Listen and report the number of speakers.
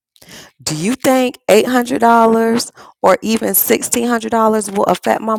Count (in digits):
1